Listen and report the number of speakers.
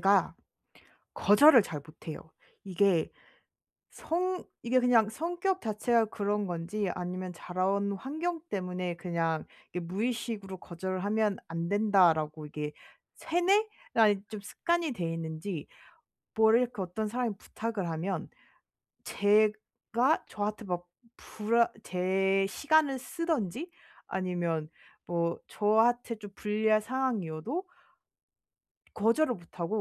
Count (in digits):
1